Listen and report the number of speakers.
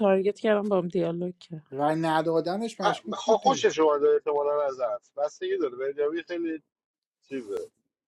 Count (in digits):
3